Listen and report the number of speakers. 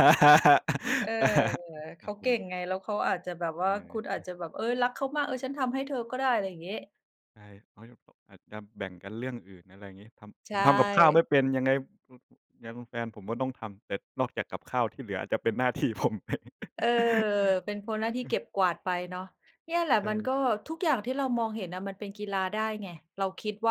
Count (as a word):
two